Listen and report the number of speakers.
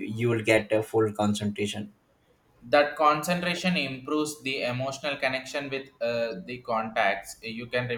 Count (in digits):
2